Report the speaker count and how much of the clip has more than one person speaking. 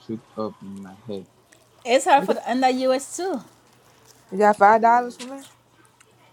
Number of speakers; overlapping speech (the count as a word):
three, about 8%